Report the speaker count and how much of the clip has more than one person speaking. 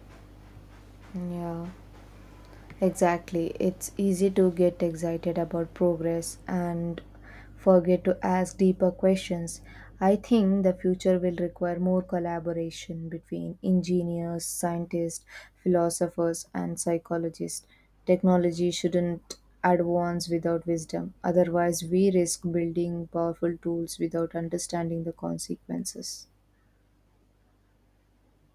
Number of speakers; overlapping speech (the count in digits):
1, no overlap